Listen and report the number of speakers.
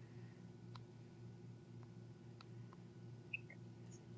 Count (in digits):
0